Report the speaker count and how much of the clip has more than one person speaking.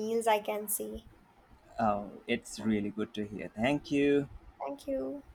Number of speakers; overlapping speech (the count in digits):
2, about 1%